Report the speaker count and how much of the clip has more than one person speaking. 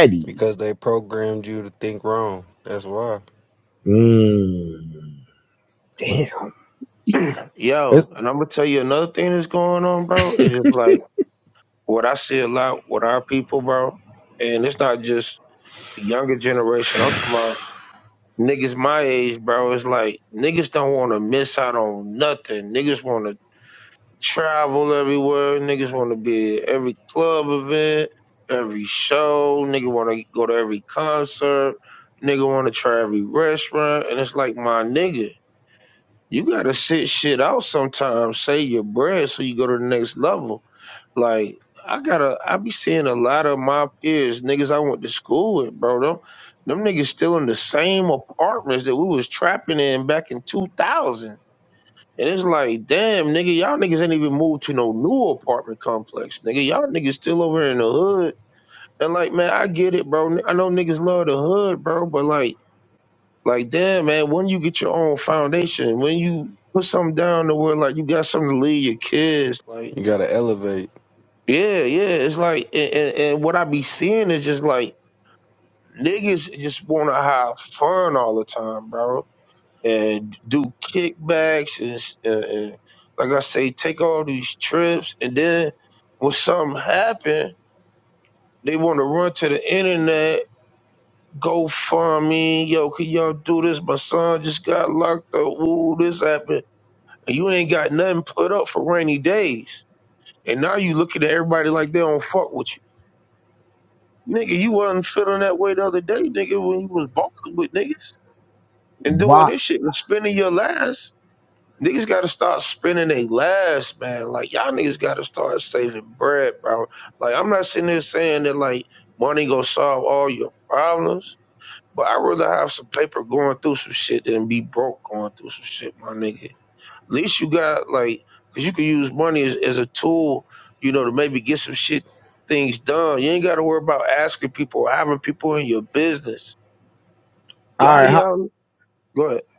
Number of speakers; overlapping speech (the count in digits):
3, about 1%